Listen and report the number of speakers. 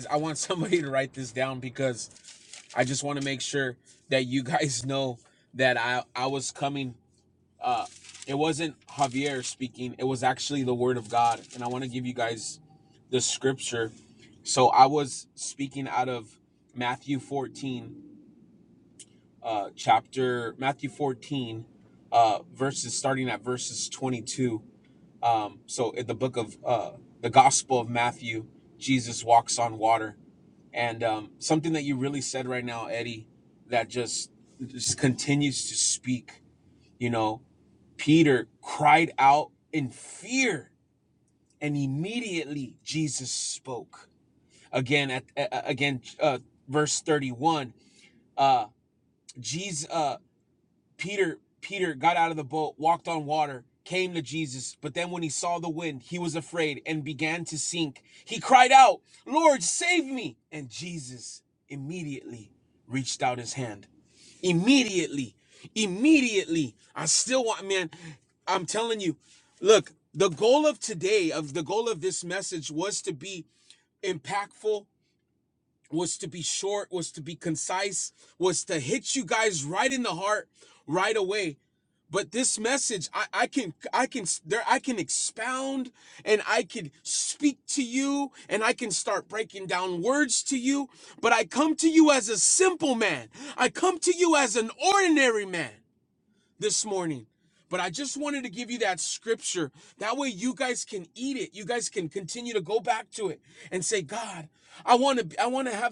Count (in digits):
1